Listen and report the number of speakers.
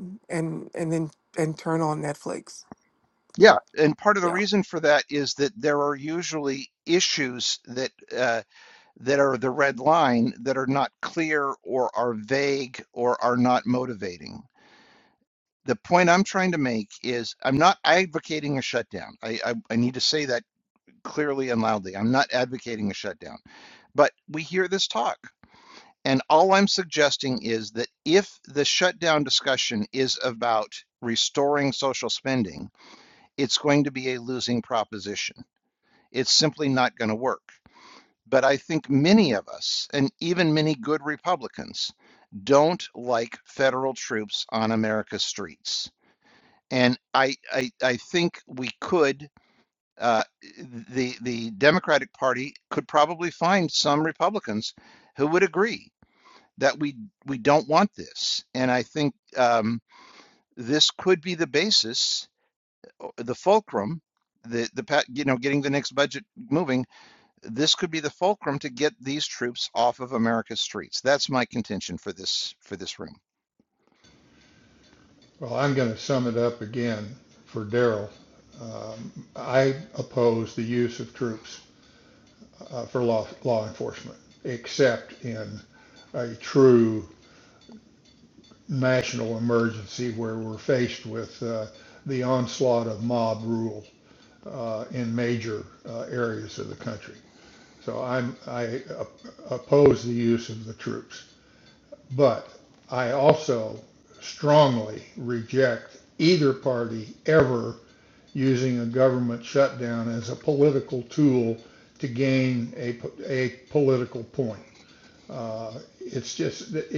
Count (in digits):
3